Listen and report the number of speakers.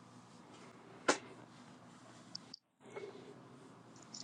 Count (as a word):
zero